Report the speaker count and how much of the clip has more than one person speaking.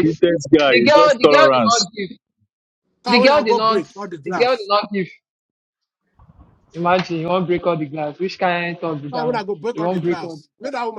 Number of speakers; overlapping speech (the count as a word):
three, about 29%